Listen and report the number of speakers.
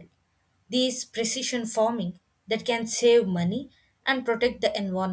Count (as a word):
one